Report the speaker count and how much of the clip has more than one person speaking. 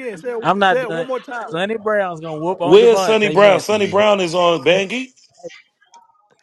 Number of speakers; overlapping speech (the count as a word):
three, about 33%